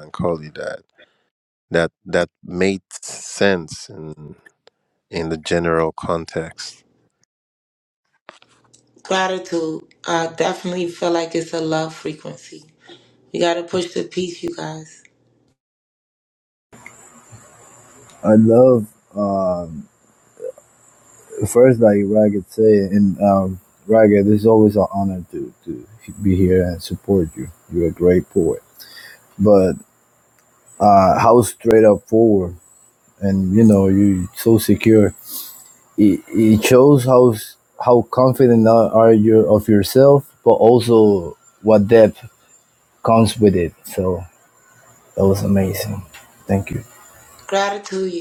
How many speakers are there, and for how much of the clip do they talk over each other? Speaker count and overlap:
3, no overlap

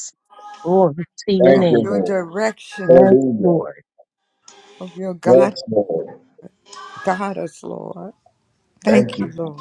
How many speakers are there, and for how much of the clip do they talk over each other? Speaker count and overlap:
3, about 24%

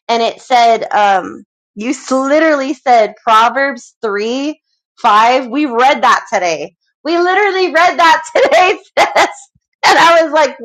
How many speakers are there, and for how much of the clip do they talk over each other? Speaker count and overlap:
1, no overlap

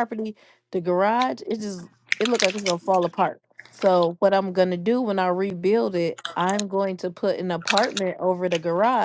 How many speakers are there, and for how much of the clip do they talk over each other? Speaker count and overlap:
1, no overlap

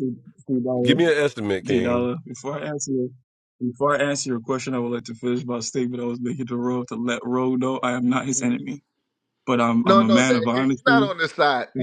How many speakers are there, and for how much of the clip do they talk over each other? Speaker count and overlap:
3, about 20%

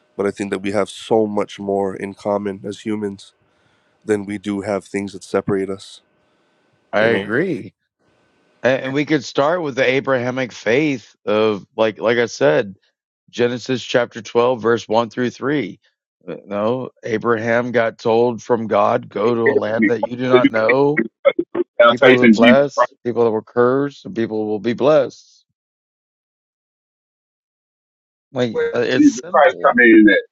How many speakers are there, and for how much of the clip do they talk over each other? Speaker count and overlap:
3, about 12%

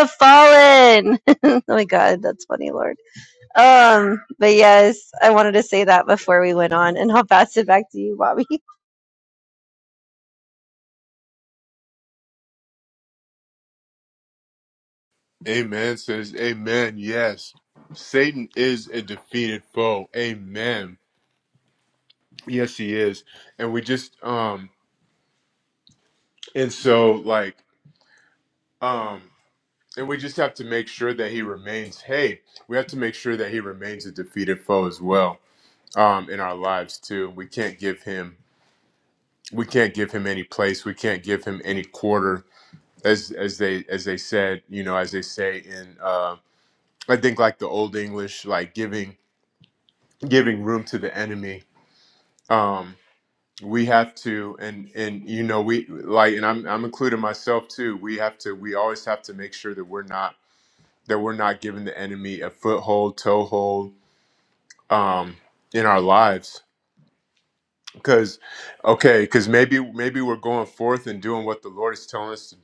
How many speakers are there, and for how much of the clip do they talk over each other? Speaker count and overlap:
2, no overlap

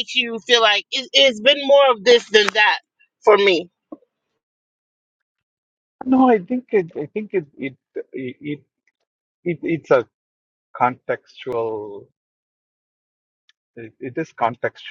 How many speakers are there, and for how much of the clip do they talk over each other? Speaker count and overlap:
2, no overlap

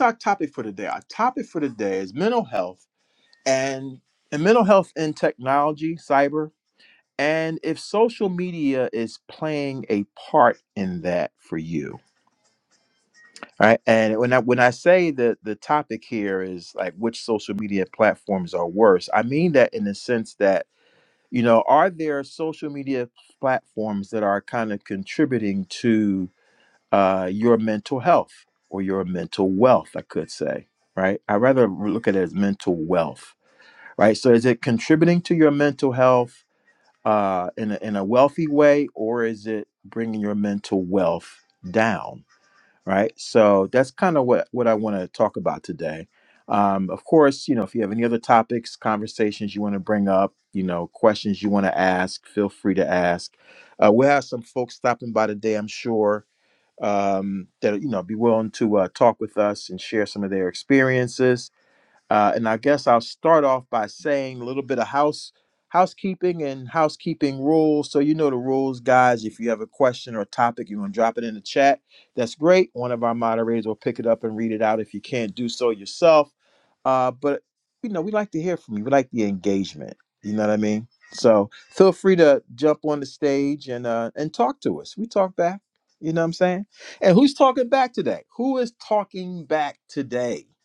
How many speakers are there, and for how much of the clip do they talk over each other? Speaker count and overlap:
1, no overlap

